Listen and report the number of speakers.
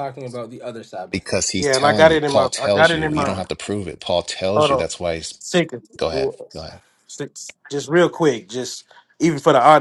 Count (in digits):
3